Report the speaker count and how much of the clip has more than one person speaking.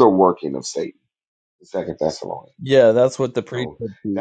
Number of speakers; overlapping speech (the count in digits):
2, about 4%